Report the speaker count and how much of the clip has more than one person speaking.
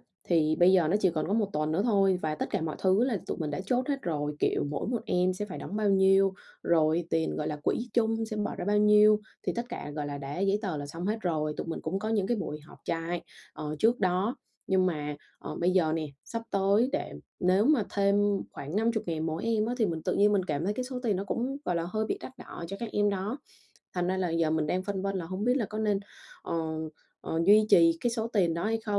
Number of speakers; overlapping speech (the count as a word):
one, no overlap